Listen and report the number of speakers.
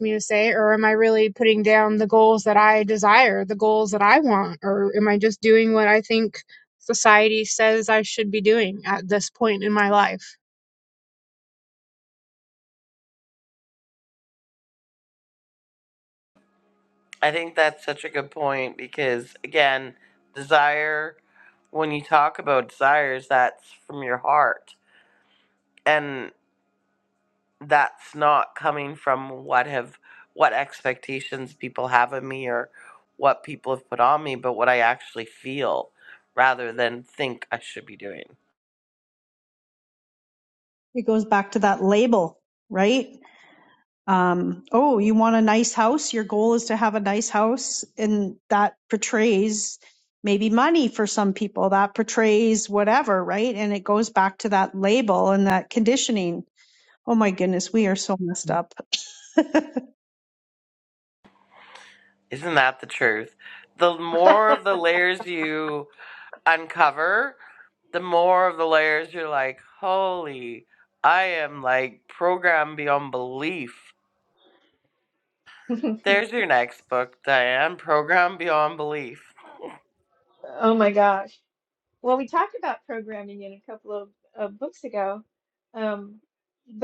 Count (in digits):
4